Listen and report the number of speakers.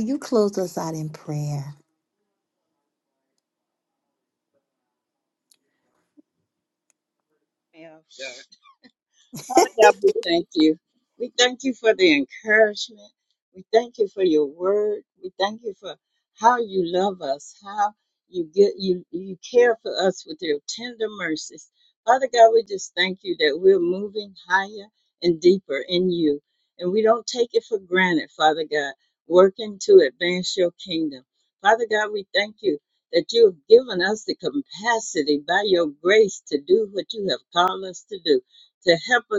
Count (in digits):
2